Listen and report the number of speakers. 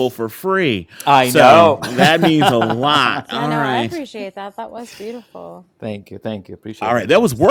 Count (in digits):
3